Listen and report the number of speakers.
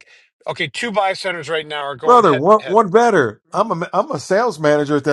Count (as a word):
two